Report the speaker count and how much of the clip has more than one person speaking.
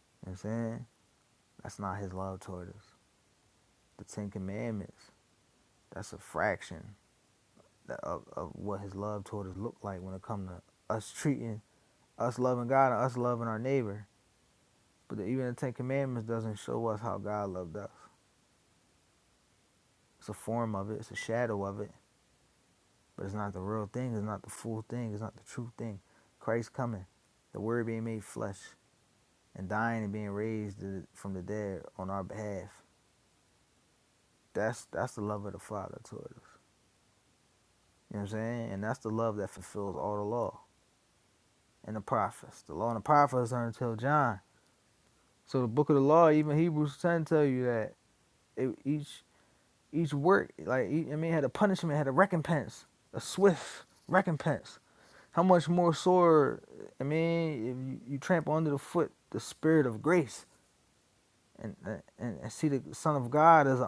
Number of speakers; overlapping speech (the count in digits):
1, no overlap